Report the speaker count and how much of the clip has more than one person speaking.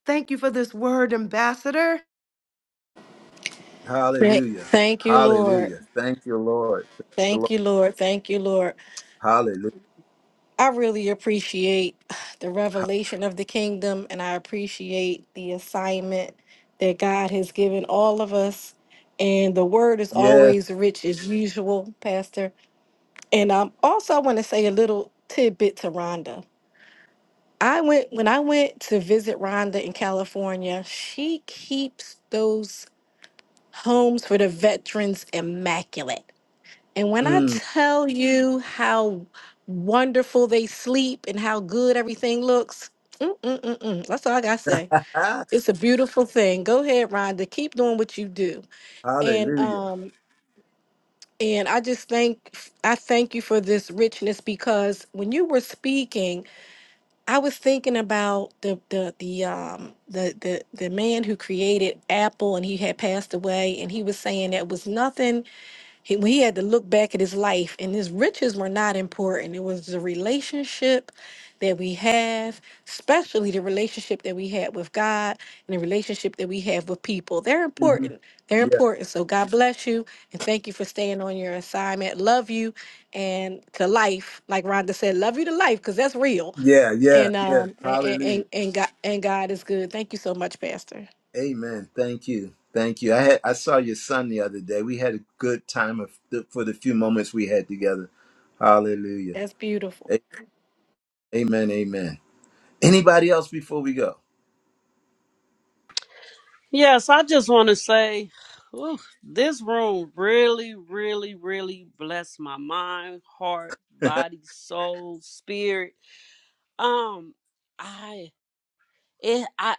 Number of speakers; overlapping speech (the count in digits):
4, about 4%